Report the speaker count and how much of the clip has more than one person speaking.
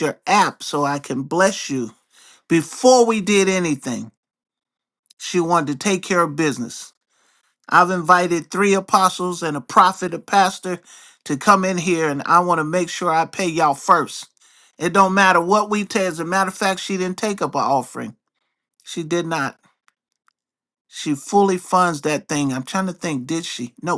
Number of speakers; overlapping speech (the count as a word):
one, no overlap